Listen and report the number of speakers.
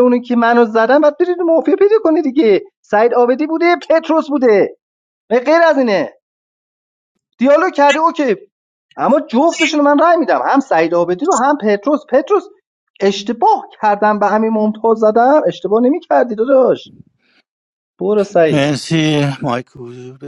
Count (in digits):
2